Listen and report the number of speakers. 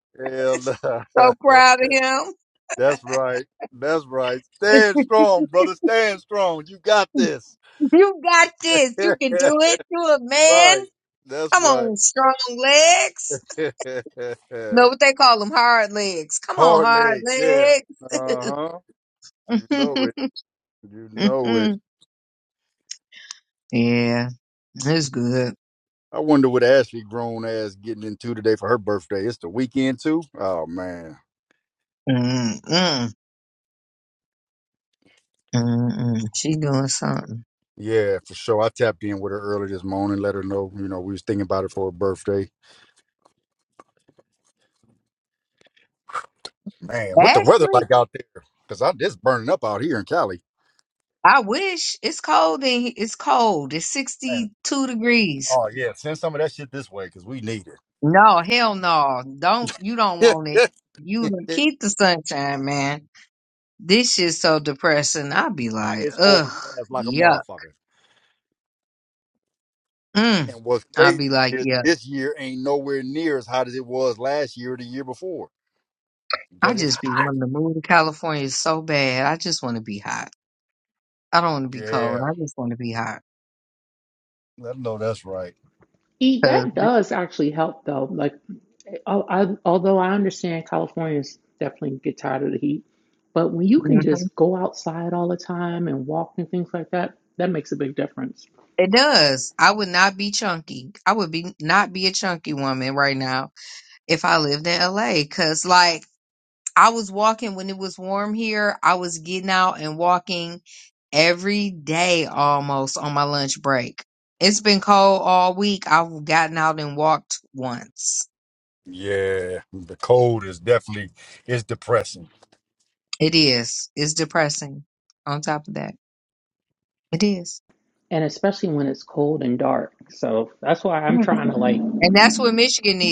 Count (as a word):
three